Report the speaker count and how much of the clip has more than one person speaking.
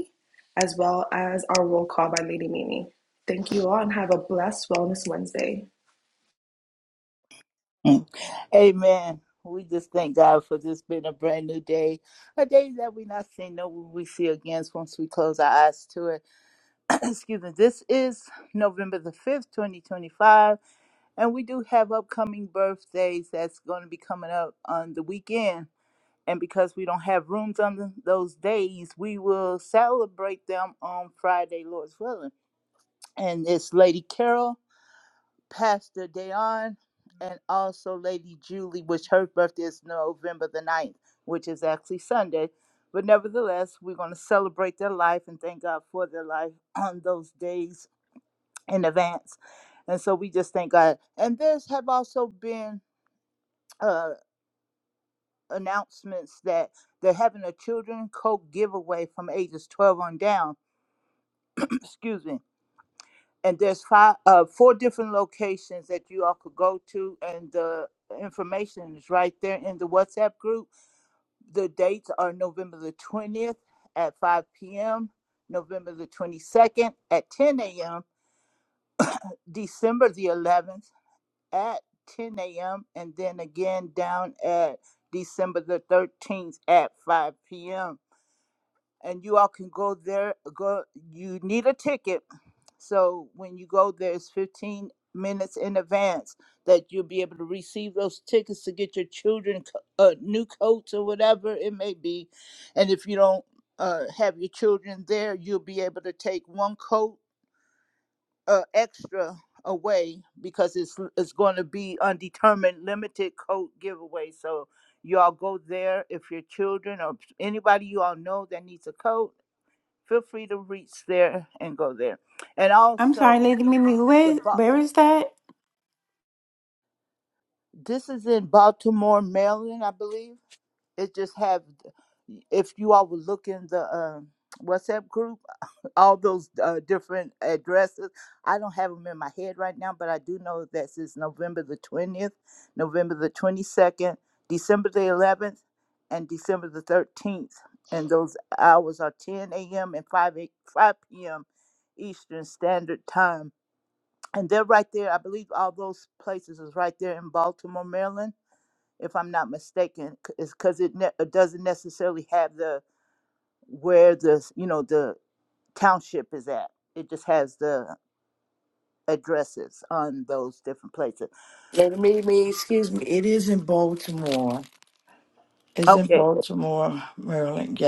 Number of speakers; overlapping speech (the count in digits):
4, about 1%